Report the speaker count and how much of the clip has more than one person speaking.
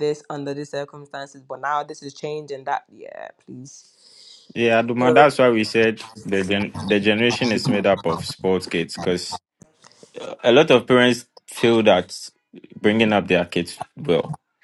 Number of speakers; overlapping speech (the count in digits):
2, about 2%